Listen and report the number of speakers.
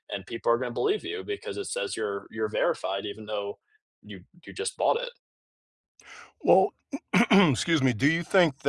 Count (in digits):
2